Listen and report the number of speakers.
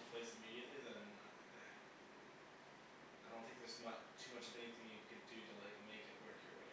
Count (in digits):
1